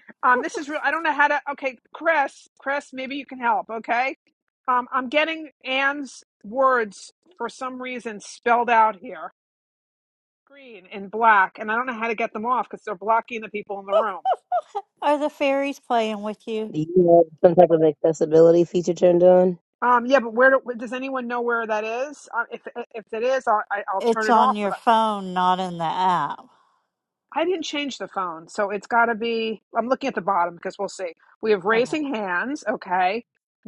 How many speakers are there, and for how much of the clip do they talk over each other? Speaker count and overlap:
3, about 3%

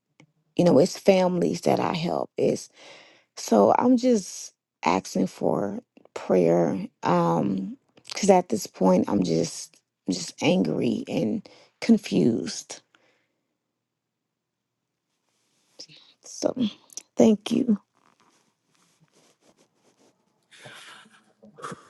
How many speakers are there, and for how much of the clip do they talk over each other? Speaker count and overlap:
1, no overlap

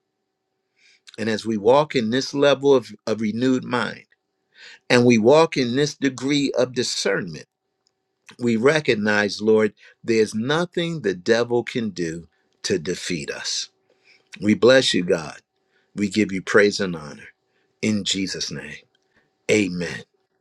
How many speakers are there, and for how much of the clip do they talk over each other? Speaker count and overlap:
1, no overlap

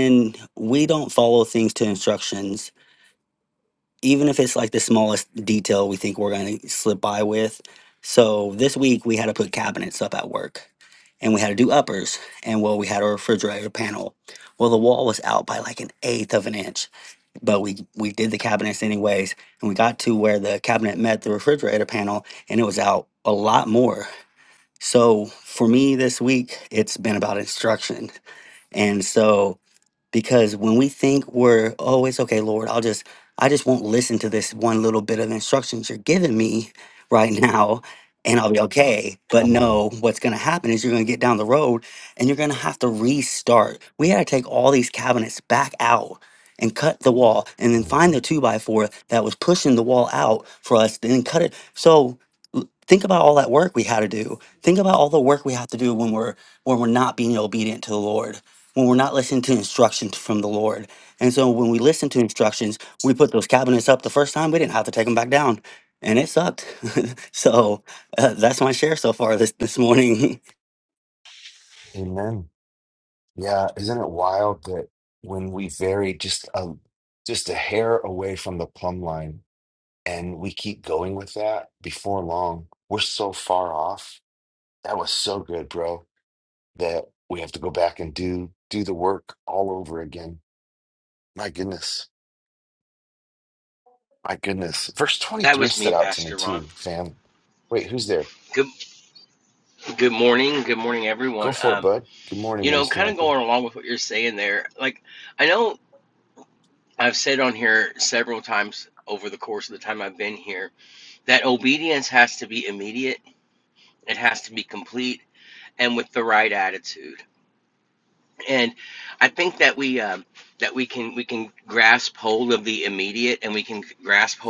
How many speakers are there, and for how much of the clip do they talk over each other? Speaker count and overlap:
3, about 3%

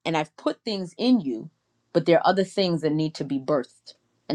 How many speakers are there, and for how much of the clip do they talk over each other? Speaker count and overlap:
1, no overlap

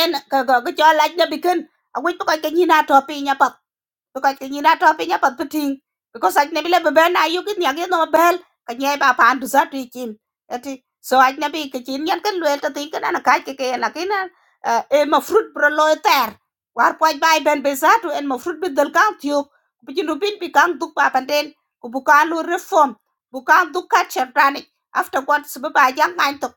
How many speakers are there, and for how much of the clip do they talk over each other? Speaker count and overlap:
1, no overlap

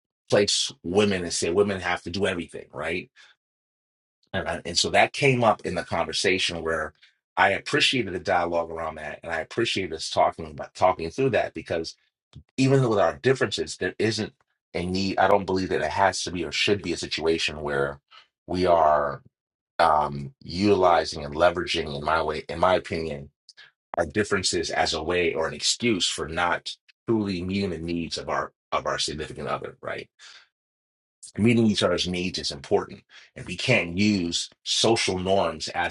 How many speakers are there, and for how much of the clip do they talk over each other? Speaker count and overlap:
1, no overlap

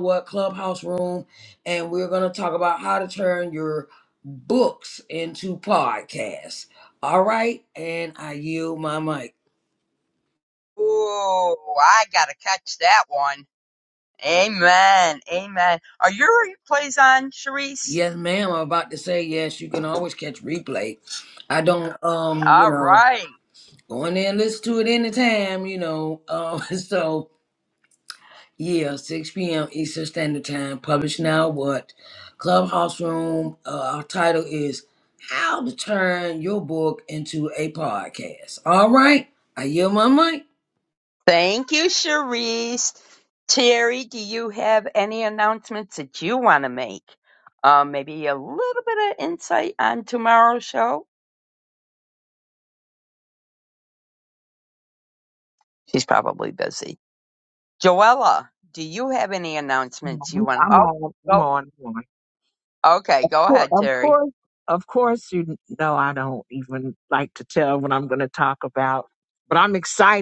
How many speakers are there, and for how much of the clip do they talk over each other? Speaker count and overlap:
3, about 3%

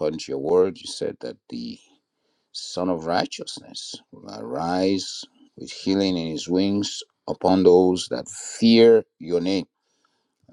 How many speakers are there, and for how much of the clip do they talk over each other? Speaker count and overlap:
1, no overlap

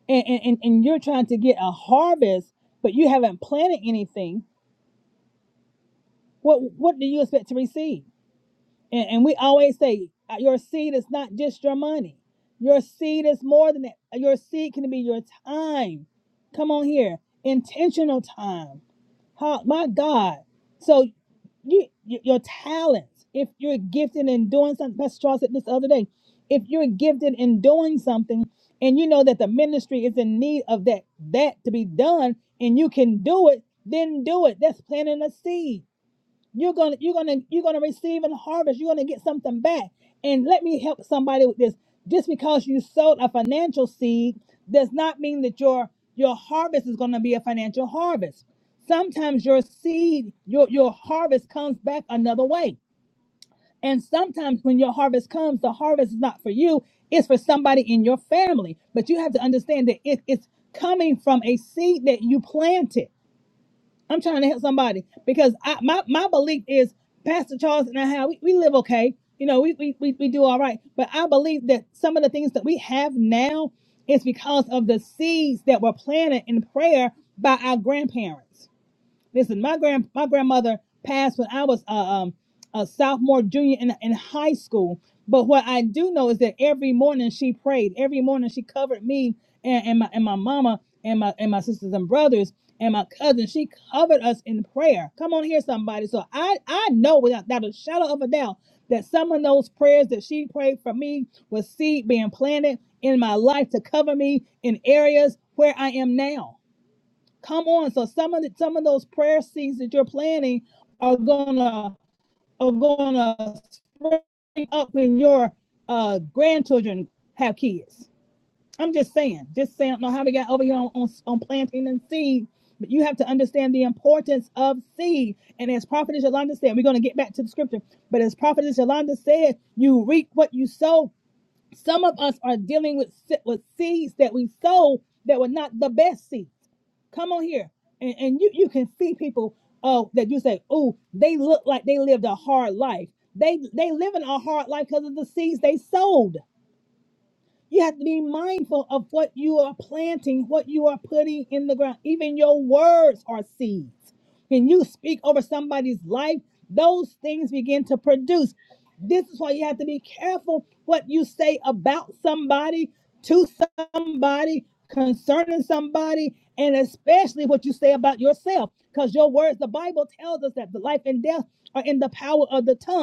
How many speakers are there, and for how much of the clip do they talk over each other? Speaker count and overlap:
1, no overlap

